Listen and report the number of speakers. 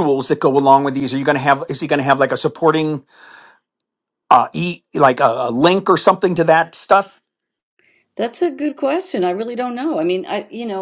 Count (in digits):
2